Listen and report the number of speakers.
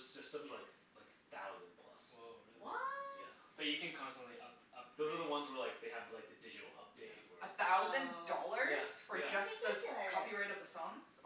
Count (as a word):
four